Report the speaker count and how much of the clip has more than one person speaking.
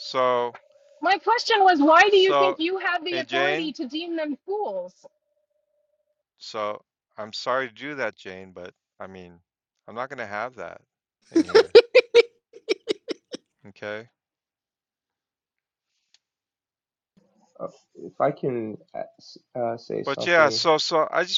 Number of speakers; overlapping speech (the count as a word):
three, about 7%